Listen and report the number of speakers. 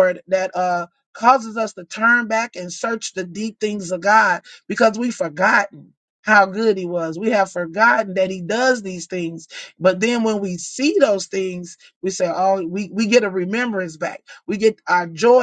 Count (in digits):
1